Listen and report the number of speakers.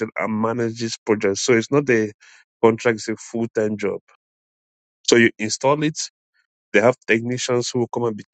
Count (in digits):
1